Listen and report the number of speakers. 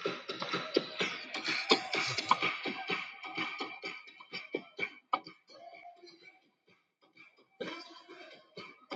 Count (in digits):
0